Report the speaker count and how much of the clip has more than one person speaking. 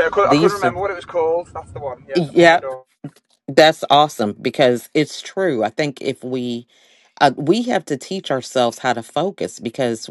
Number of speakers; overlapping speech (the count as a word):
two, about 9%